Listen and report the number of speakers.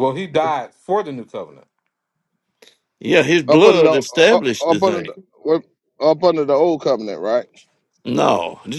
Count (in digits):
3